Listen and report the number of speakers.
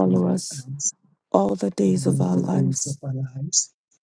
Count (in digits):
2